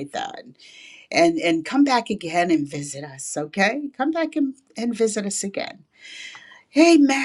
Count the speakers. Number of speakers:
1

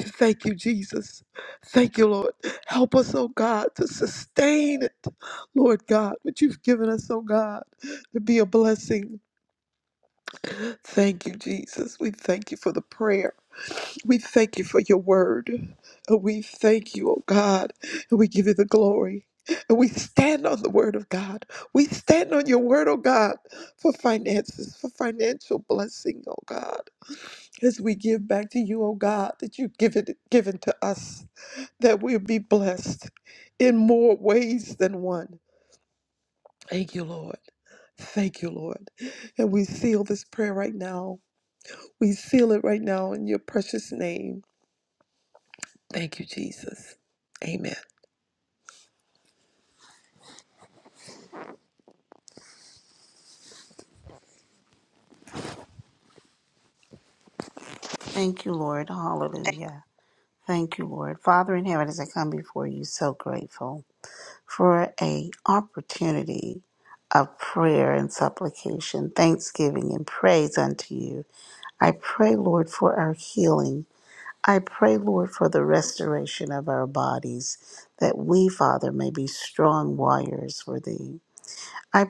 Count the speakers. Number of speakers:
2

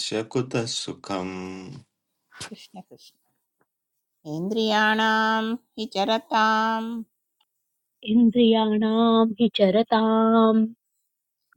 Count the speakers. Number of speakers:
3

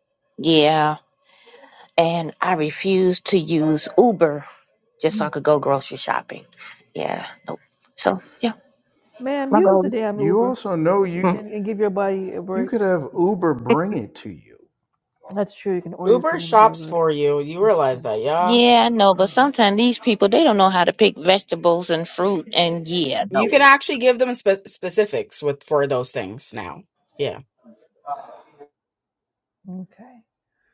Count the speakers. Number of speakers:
4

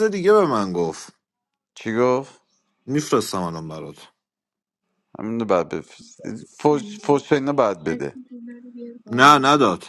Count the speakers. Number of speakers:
3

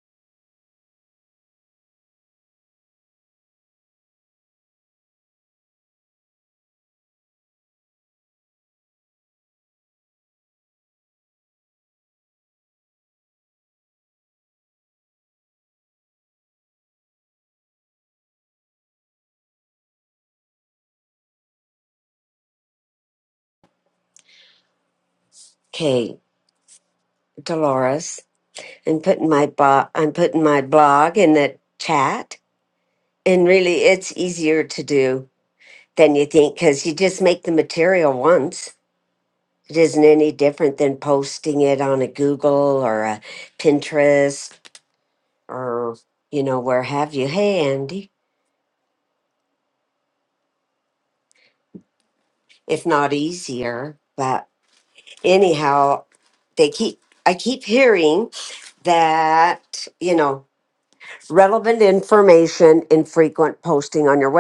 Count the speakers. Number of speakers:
1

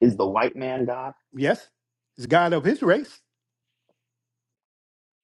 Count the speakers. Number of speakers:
2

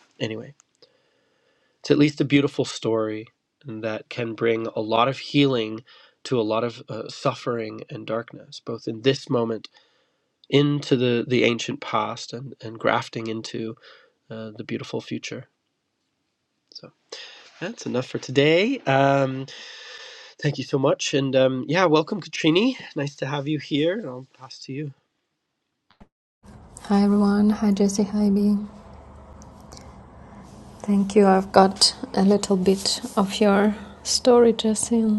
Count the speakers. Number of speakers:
2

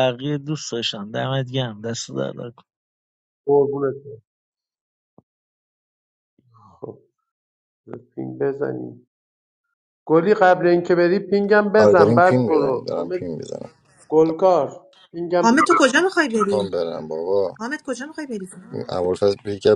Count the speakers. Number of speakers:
4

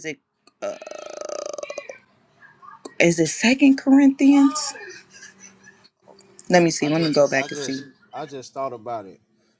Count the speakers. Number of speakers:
2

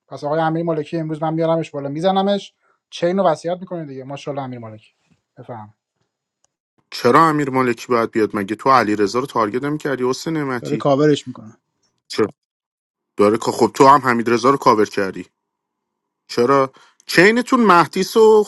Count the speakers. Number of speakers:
2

